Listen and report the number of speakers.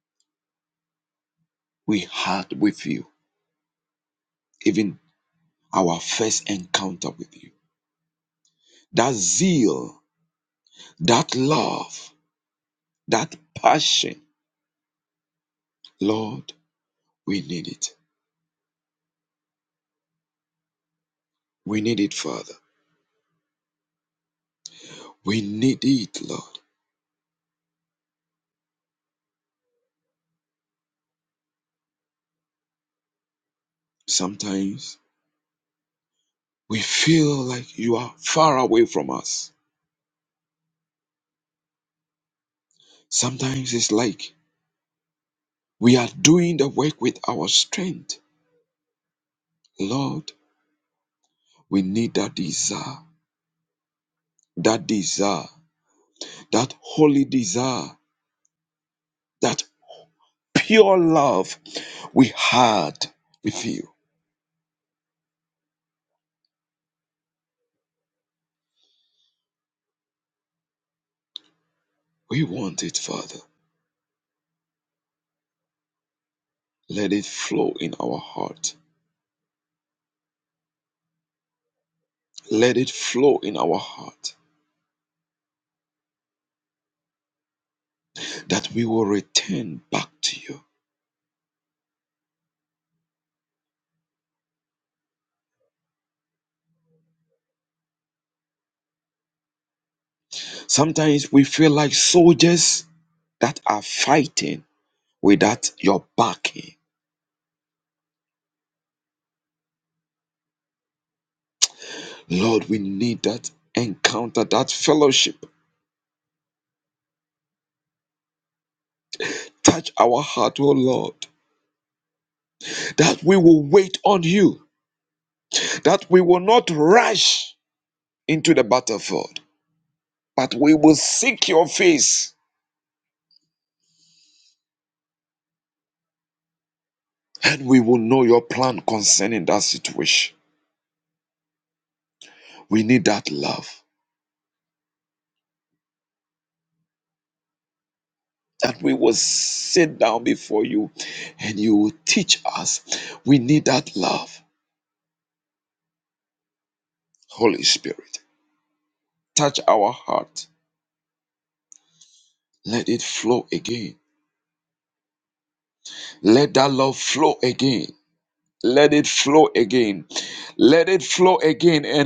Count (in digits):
1